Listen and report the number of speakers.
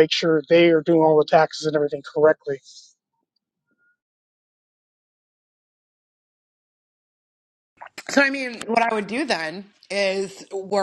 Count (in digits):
2